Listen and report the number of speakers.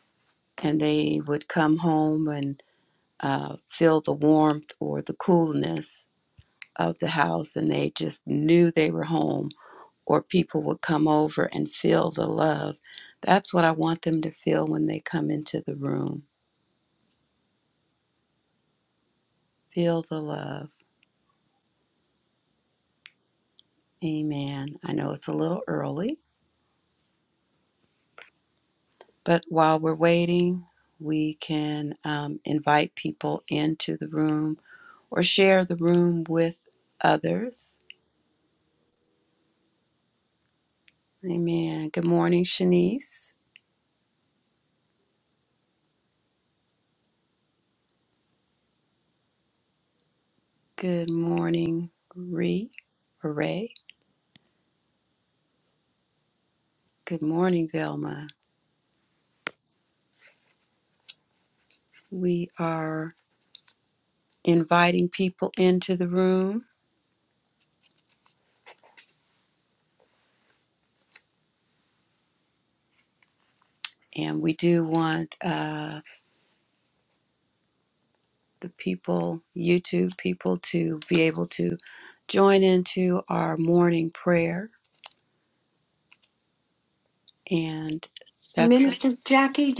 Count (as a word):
two